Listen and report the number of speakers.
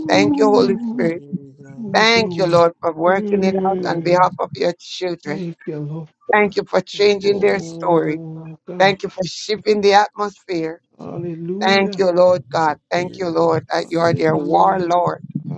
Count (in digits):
3